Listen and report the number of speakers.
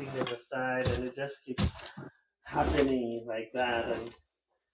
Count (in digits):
1